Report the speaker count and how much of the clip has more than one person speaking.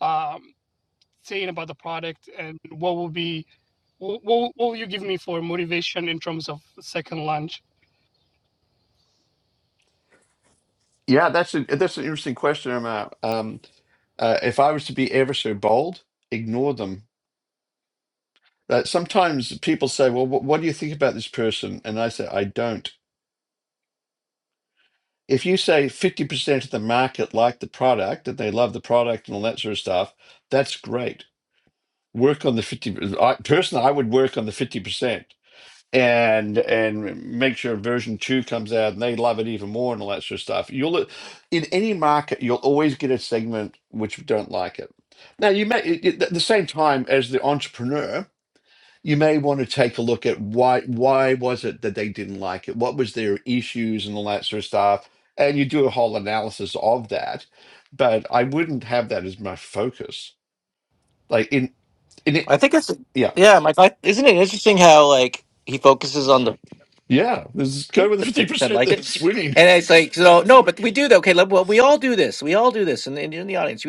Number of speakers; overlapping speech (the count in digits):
3, about 1%